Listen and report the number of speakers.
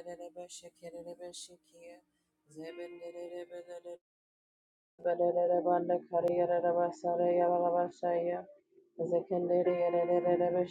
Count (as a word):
one